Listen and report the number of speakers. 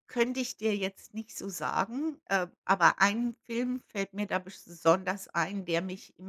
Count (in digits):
1